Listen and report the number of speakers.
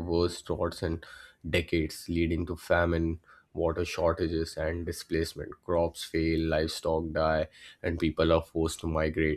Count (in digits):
1